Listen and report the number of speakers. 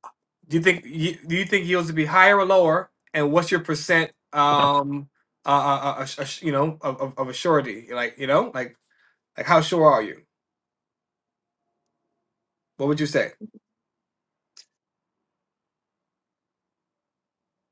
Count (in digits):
1